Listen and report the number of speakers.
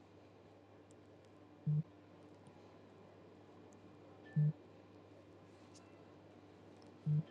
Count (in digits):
0